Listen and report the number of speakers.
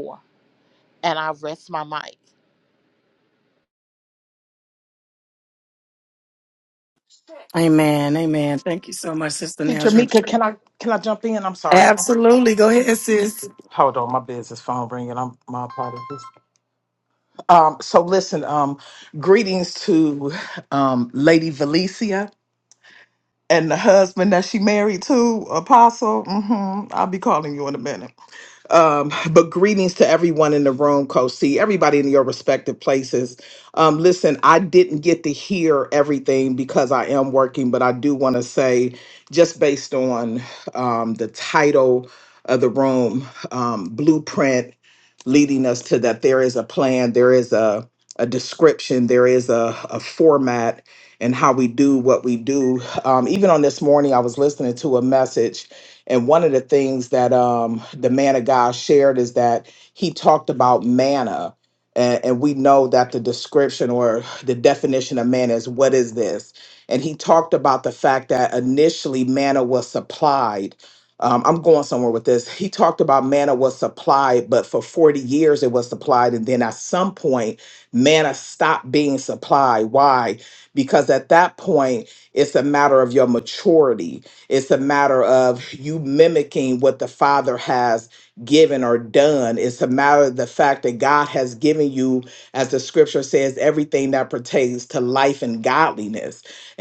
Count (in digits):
3